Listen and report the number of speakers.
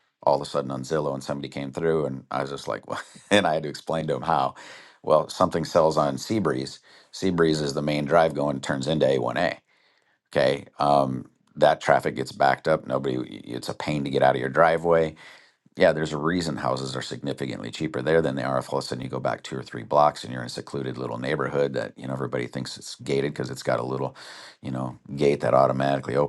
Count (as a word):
one